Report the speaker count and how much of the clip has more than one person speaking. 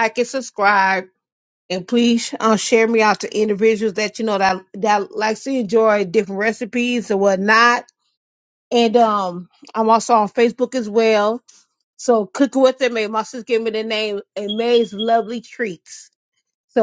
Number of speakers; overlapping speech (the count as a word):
one, no overlap